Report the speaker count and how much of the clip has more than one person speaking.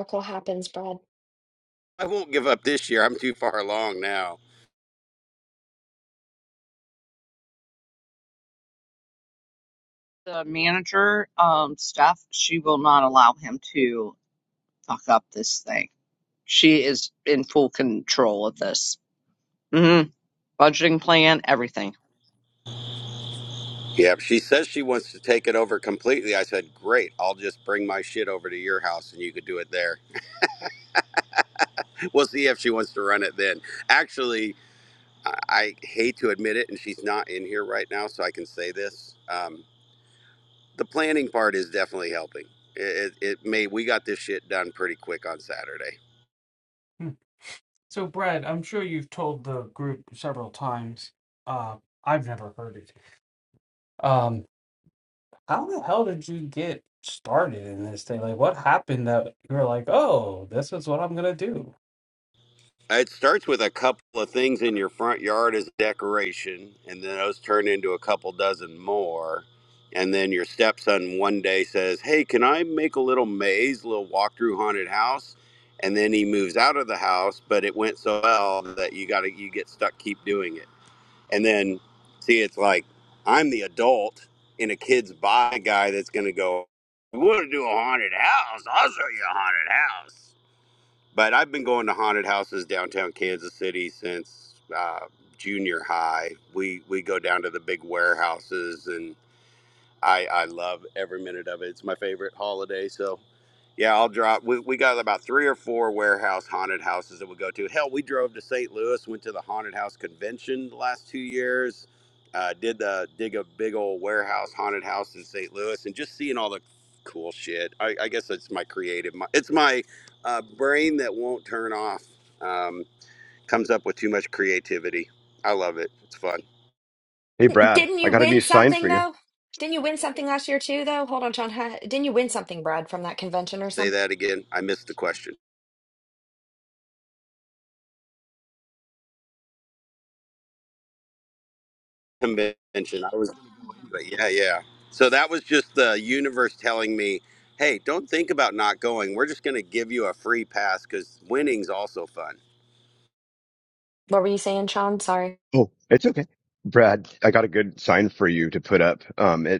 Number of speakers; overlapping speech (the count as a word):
five, about 1%